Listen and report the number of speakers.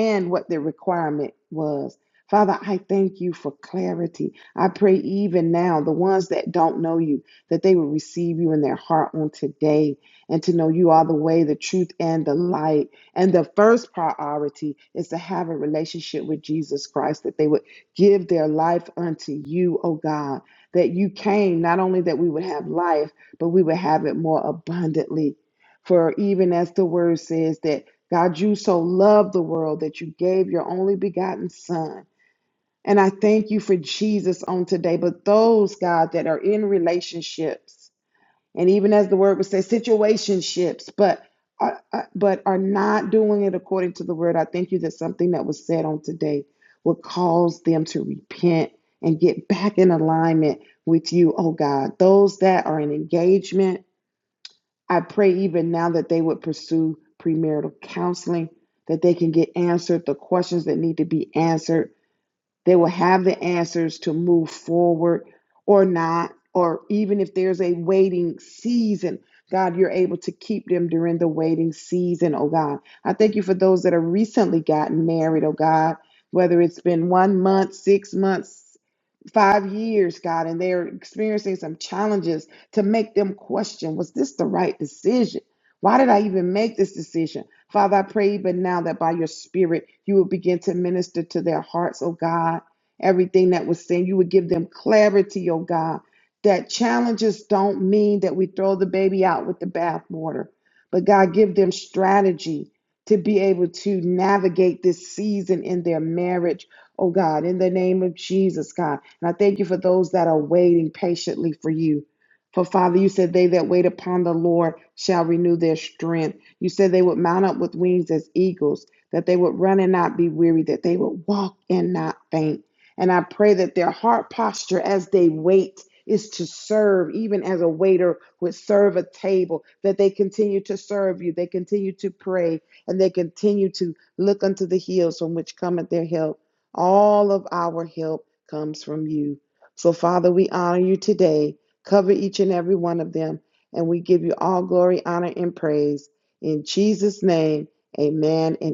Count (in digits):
1